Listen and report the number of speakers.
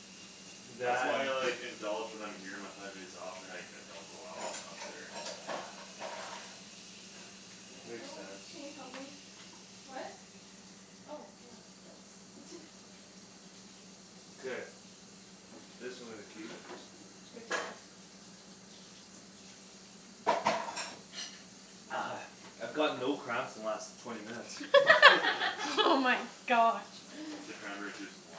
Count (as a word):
four